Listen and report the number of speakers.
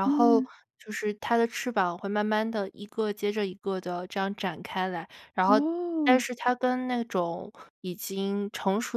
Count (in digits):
2